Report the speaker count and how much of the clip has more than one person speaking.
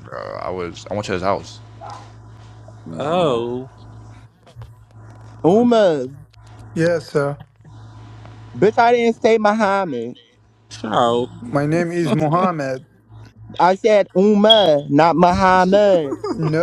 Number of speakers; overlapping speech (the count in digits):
4, about 3%